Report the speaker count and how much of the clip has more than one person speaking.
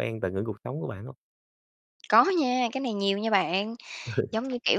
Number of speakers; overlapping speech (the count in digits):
2, no overlap